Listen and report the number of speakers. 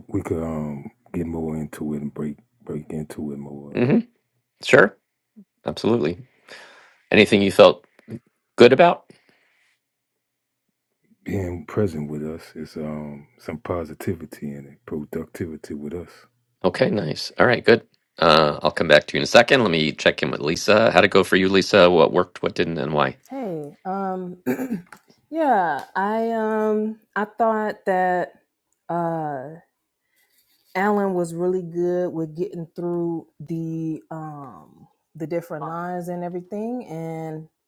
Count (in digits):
3